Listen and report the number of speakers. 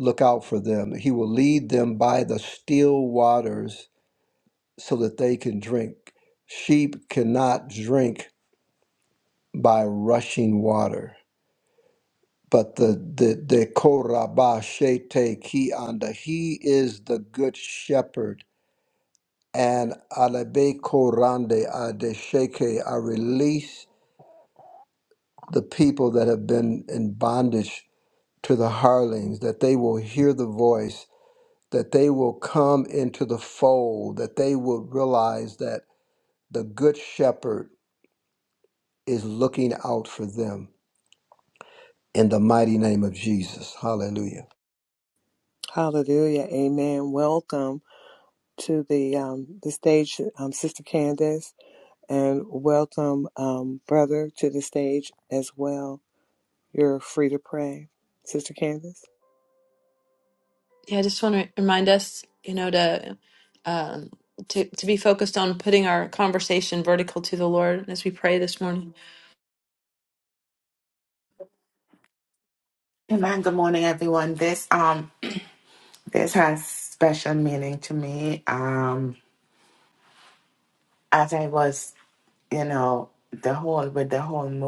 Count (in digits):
4